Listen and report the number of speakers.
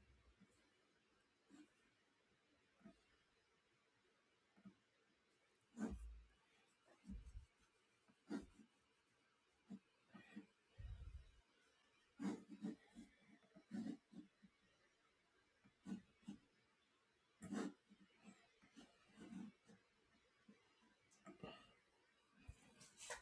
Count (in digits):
0